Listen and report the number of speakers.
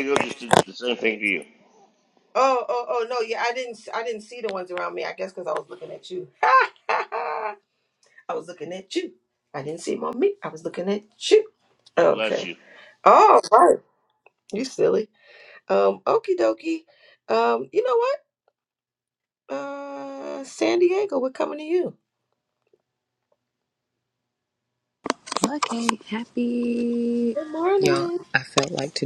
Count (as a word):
three